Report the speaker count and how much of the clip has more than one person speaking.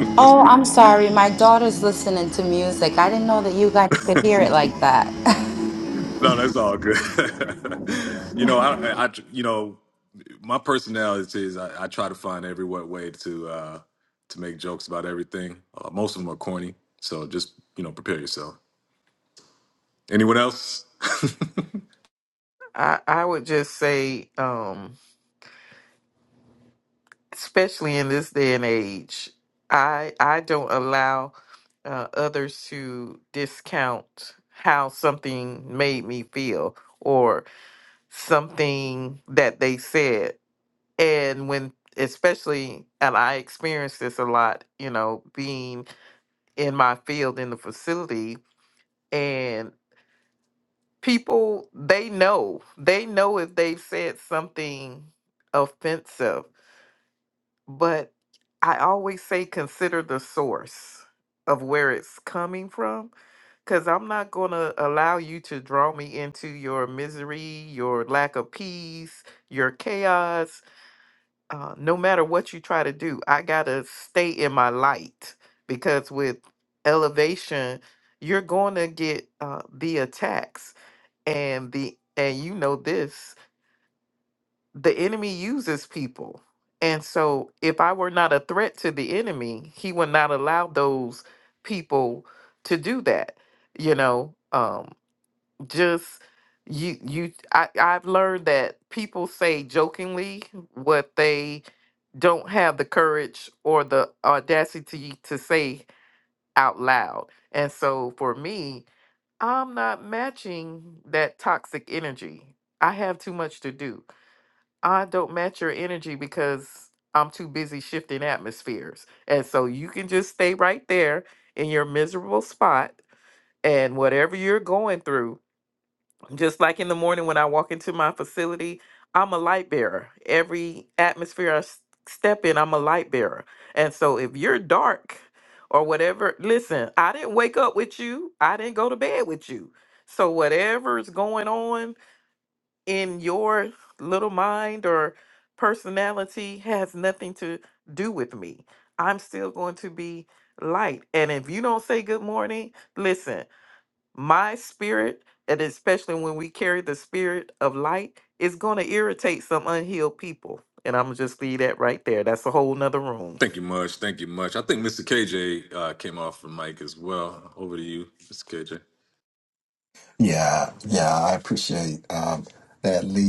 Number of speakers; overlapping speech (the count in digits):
4, no overlap